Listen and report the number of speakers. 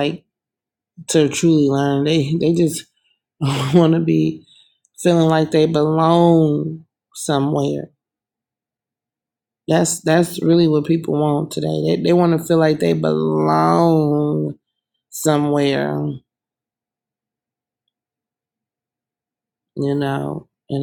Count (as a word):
one